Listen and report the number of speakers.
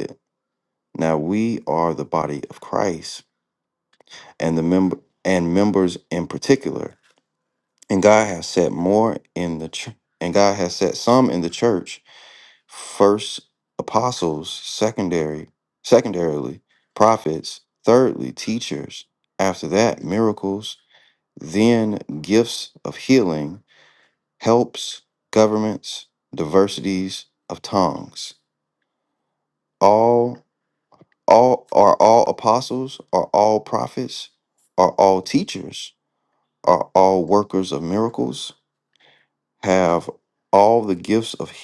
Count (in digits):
1